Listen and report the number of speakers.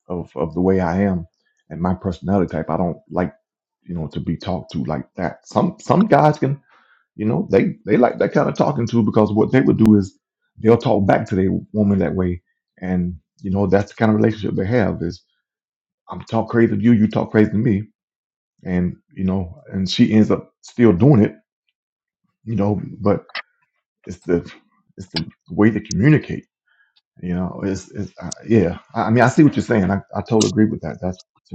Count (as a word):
one